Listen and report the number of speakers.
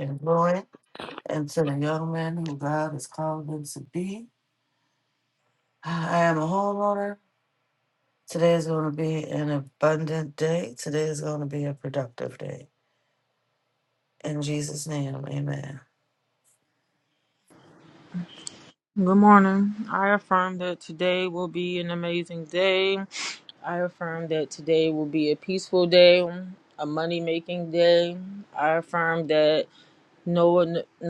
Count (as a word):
two